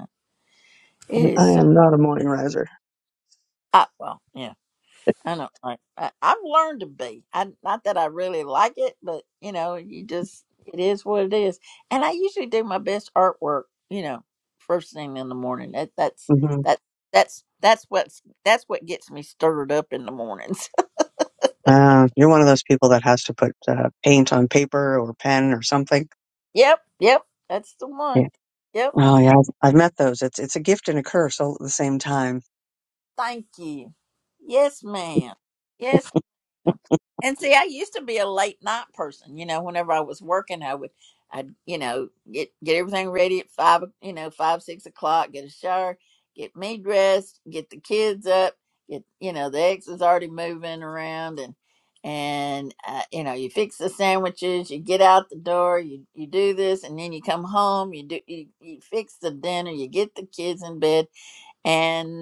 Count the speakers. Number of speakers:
2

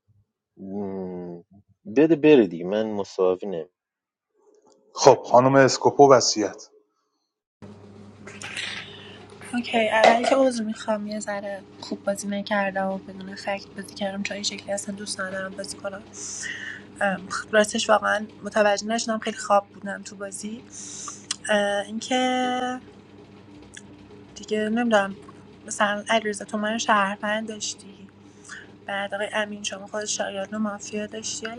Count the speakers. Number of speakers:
3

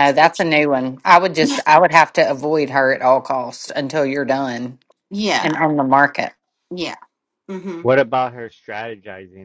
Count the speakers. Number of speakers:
3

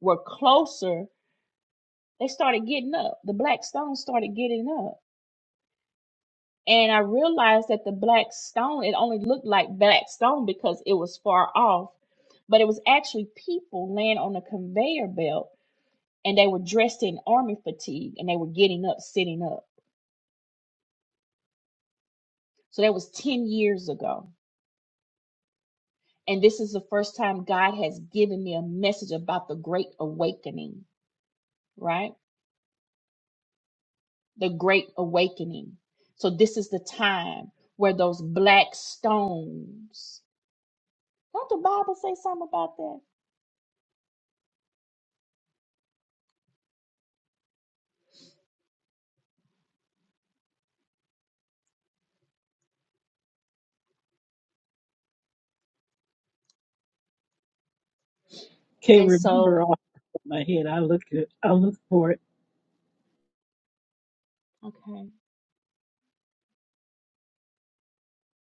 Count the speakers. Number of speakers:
2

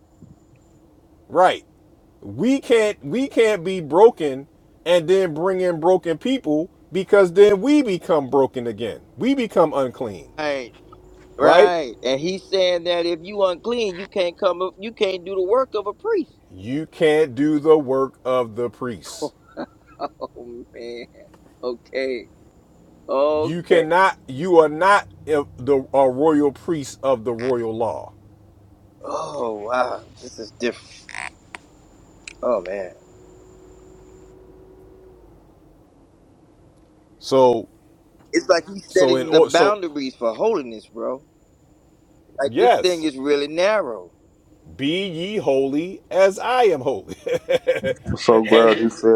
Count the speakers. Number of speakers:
3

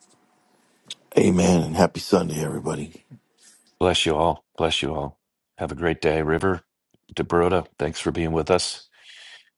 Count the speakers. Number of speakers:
2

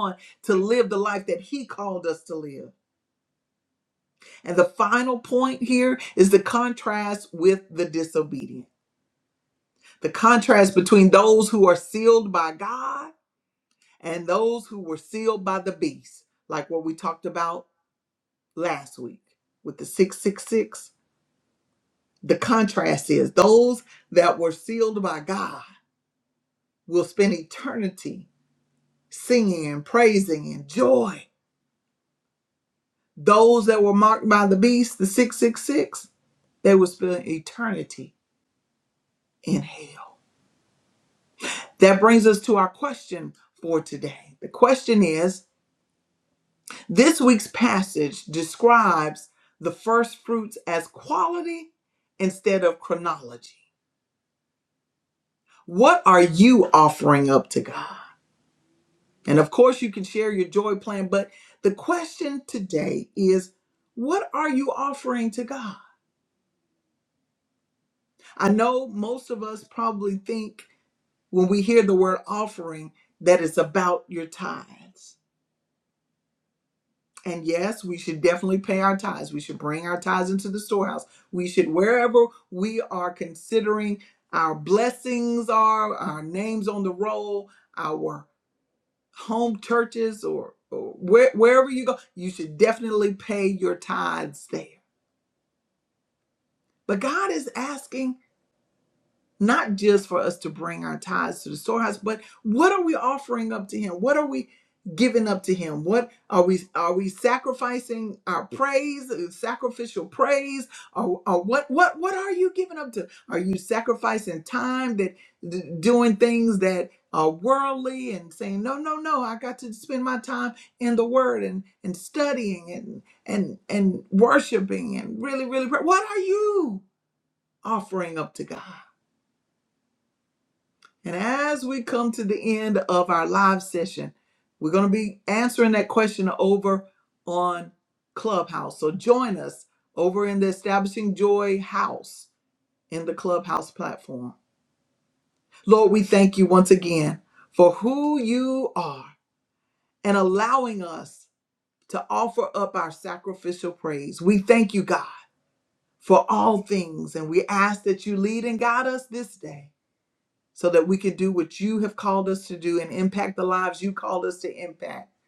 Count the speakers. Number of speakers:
1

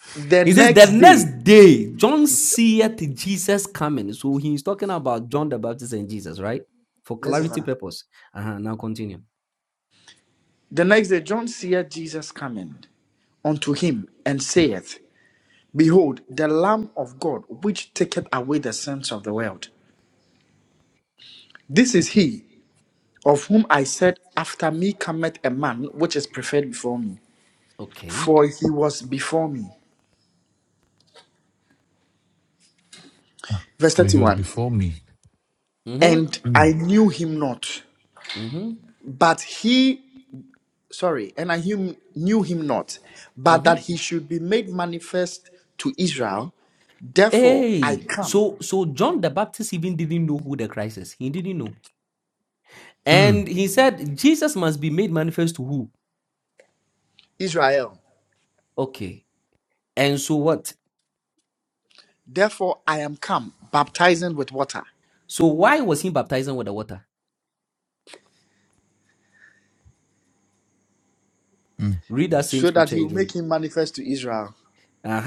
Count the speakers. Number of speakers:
3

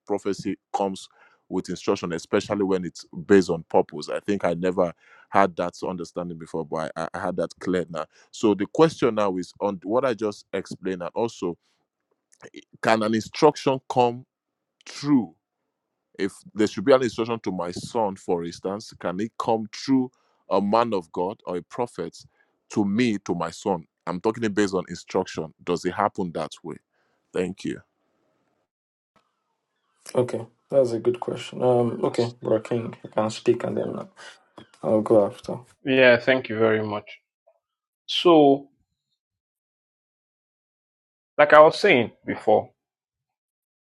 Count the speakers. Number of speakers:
3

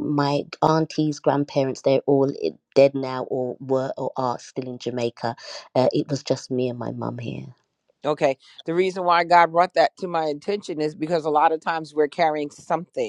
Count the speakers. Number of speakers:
2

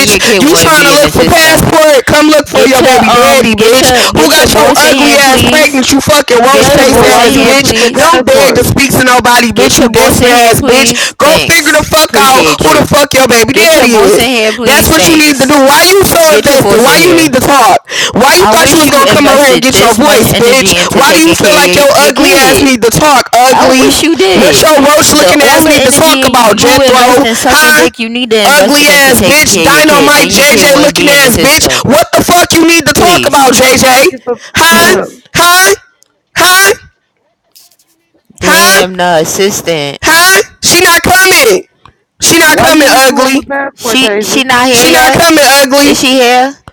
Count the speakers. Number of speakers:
3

